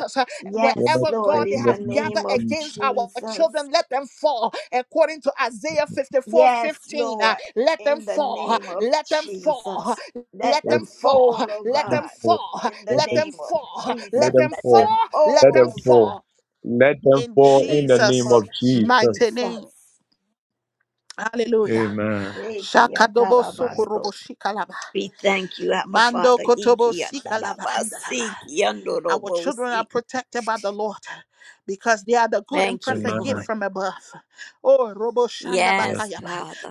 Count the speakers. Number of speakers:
3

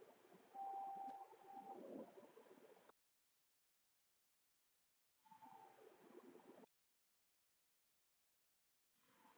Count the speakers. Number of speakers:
0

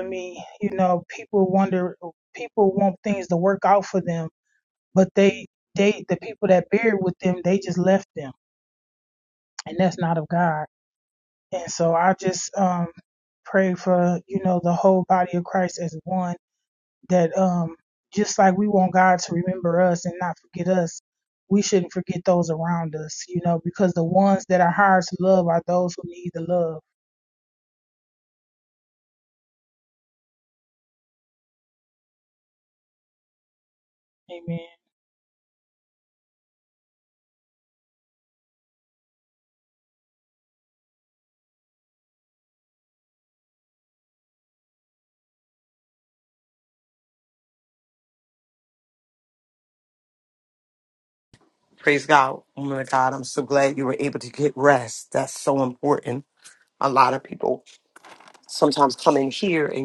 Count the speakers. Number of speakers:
2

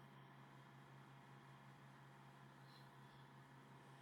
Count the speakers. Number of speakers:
0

